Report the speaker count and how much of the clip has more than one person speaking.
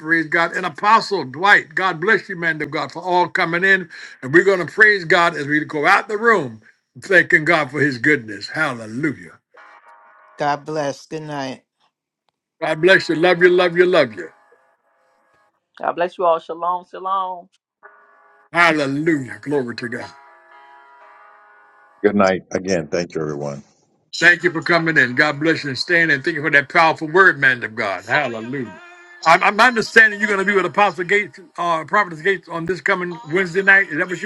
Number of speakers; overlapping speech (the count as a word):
four, no overlap